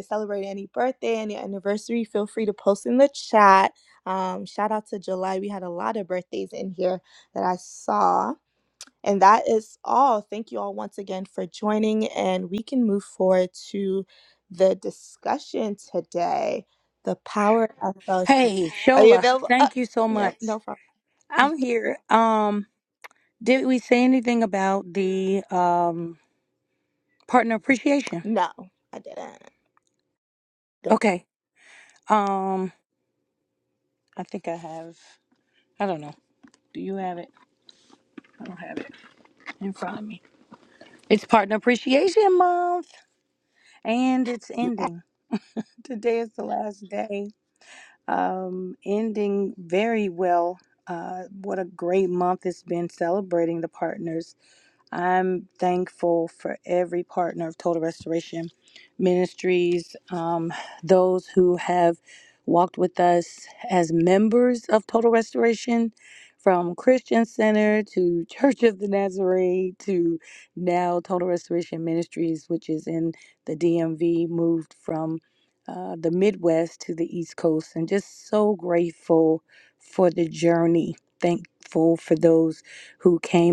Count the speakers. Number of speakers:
2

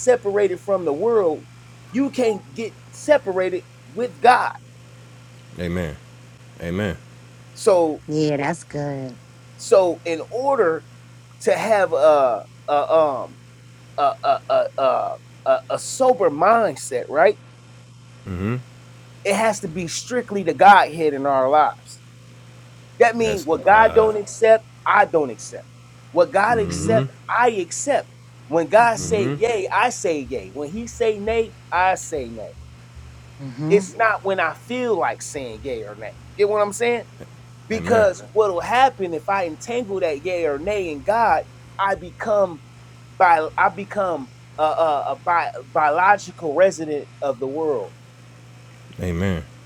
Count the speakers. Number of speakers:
3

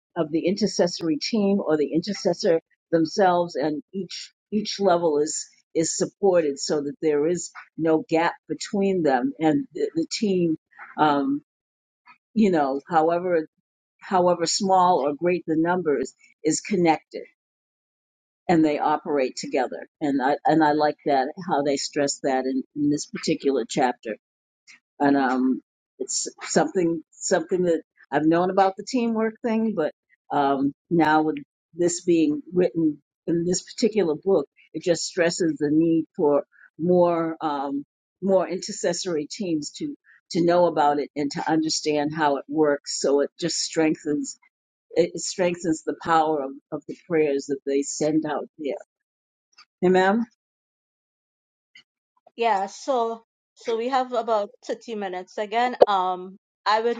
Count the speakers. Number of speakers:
2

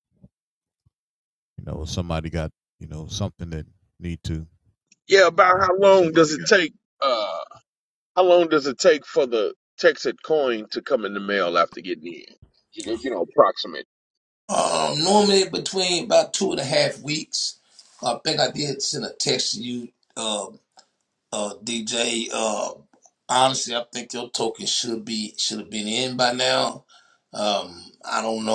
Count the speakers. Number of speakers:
3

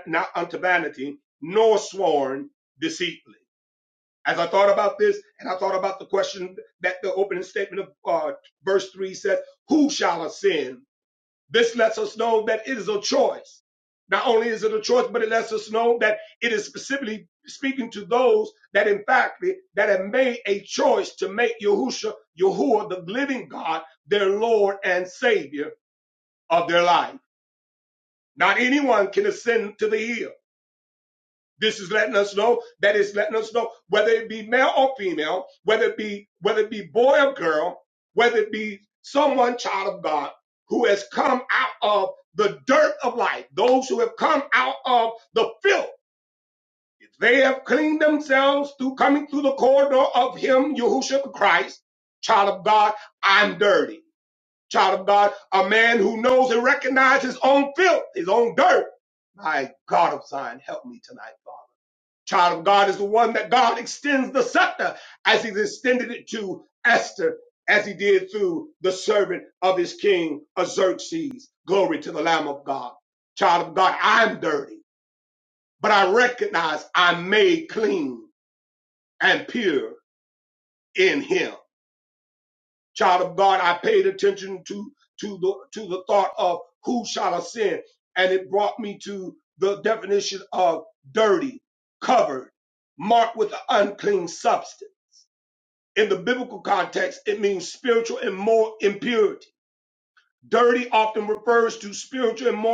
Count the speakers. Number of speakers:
1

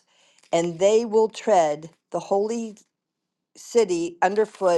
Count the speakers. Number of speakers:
1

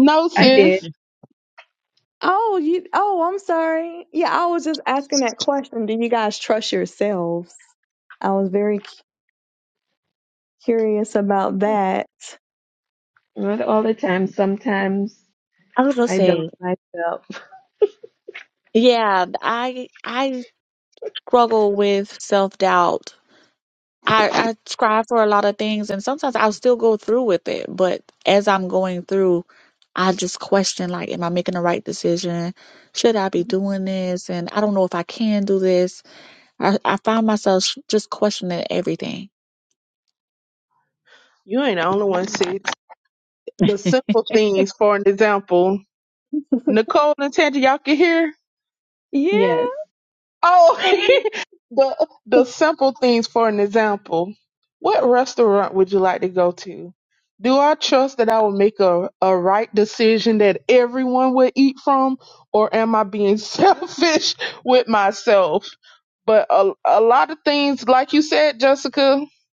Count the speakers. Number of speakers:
4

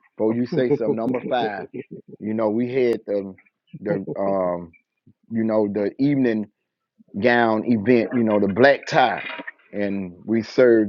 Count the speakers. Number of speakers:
1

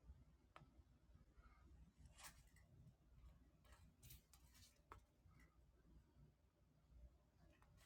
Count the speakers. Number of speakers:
0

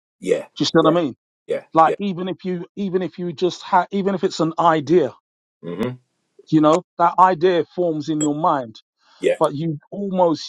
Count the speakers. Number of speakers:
2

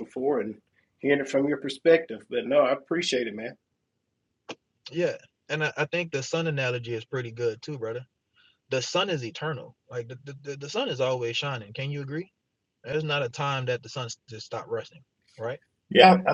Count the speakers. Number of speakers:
2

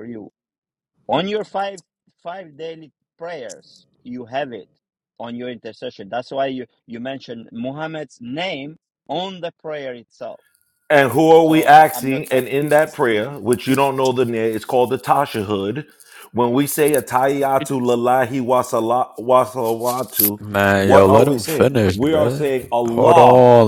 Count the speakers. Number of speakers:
3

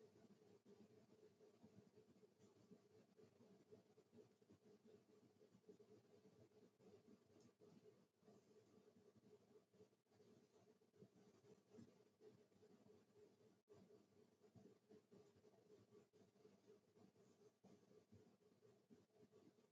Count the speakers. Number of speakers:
0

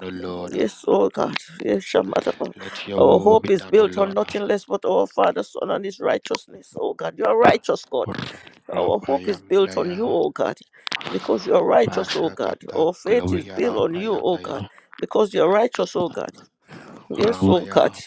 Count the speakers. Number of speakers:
2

